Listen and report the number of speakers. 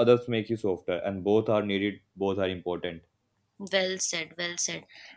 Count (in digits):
2